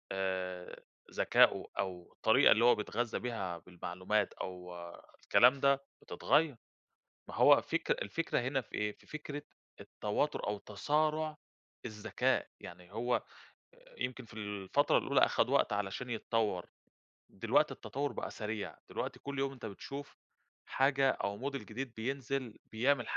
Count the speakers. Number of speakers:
one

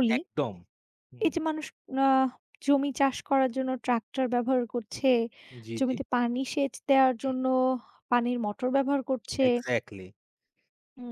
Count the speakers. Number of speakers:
two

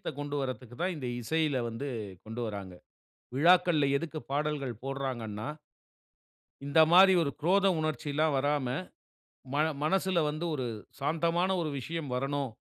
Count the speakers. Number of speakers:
one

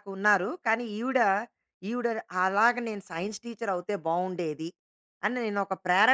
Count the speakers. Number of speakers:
one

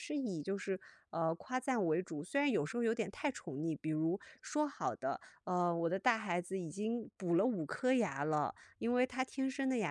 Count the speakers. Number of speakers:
one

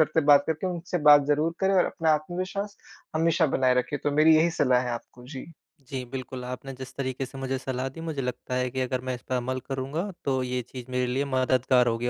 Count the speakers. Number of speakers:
two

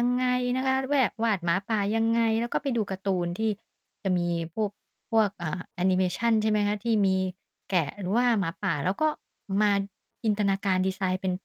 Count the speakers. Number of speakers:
one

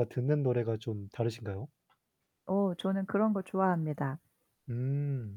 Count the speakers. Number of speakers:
two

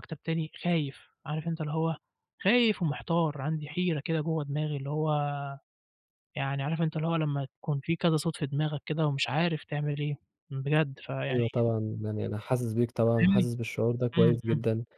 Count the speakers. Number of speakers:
two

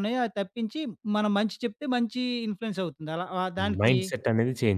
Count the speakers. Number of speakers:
two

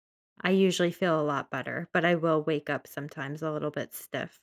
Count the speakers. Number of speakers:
one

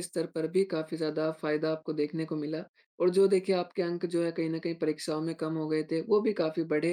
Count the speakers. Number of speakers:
one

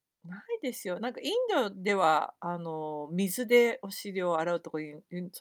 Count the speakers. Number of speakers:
one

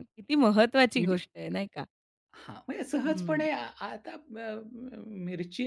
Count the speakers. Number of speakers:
two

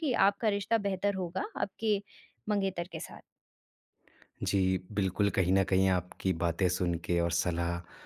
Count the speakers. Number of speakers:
two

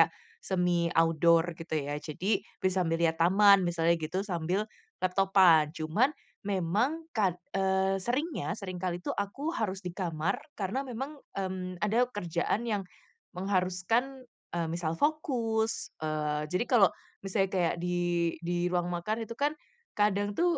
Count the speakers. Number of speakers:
one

